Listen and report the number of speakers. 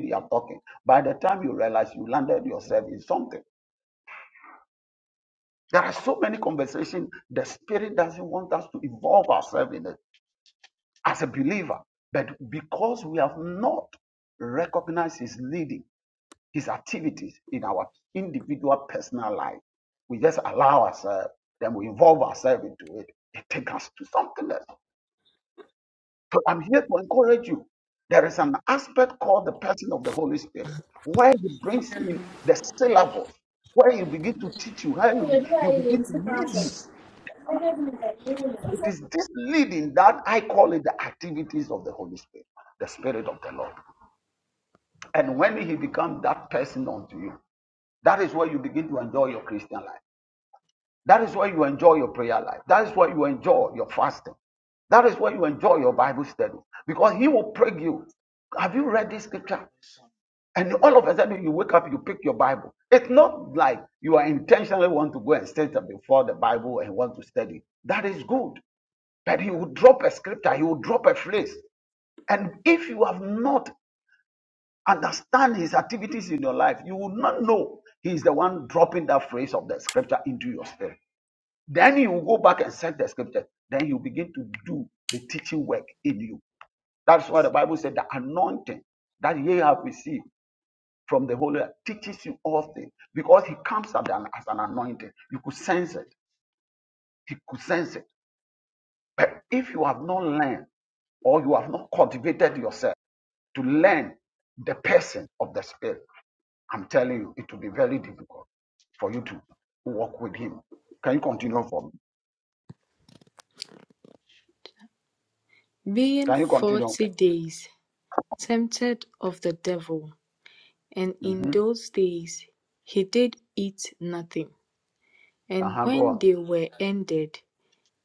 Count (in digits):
3